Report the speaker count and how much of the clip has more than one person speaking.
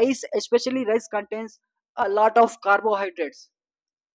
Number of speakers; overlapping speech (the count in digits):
1, no overlap